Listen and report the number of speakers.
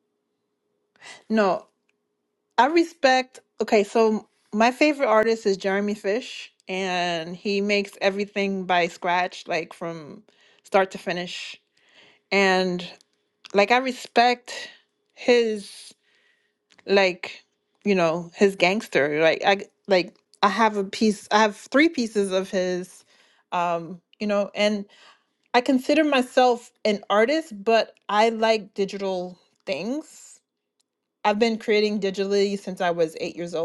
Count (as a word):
one